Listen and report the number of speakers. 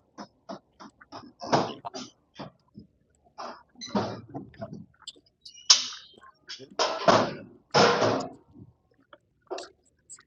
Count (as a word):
zero